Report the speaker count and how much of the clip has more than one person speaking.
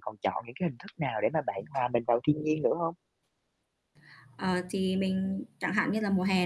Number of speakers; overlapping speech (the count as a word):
two, no overlap